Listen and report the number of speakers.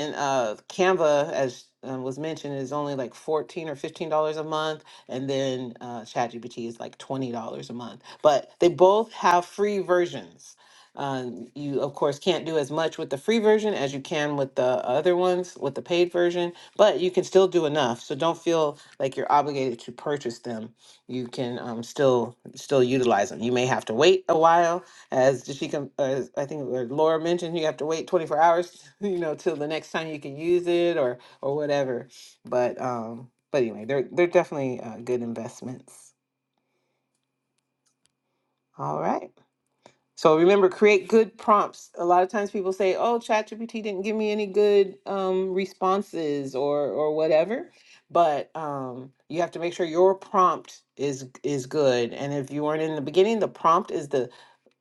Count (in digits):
1